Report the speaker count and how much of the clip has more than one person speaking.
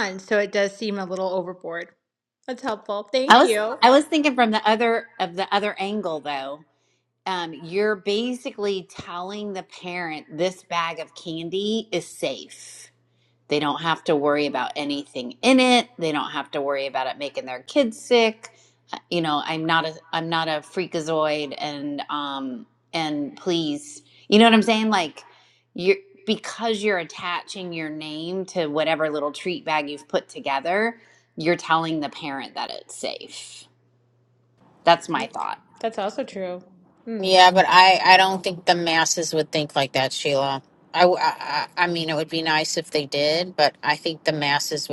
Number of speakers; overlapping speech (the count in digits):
3, about 1%